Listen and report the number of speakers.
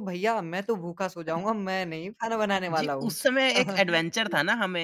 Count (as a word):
two